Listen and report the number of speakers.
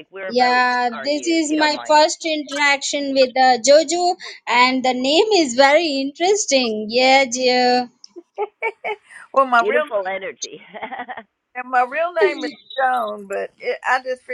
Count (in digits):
3